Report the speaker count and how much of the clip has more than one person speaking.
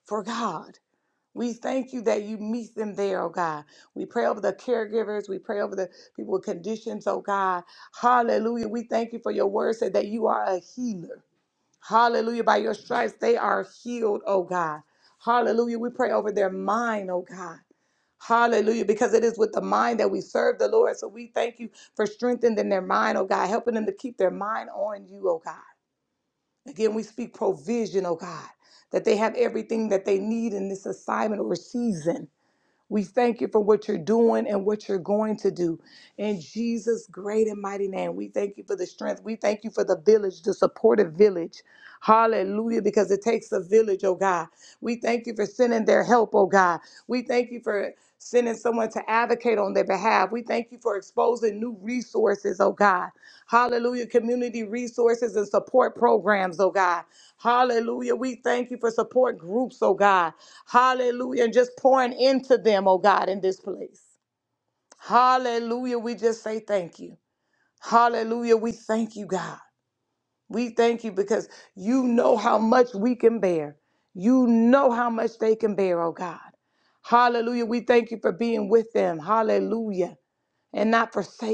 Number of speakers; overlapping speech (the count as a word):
one, no overlap